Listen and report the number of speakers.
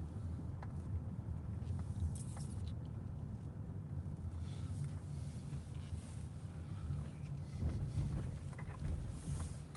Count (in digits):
0